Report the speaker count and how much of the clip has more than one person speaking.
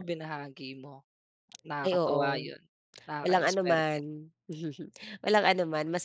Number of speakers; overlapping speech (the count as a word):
two, about 24%